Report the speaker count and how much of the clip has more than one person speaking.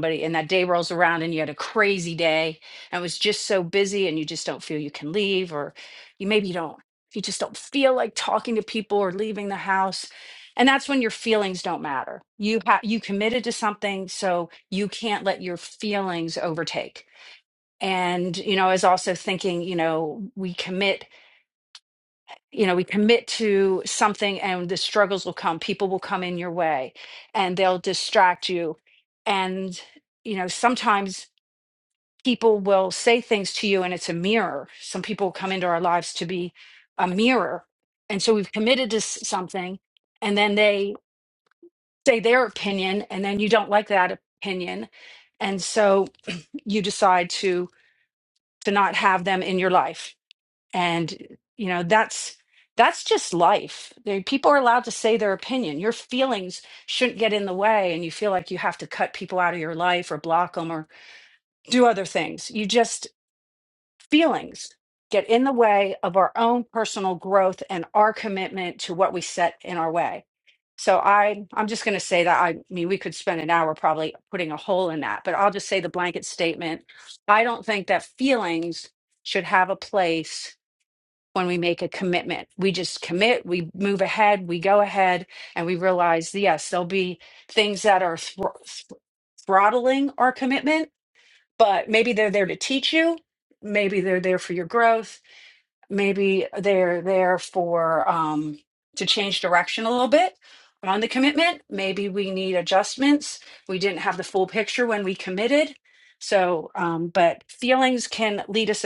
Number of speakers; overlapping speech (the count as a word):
one, no overlap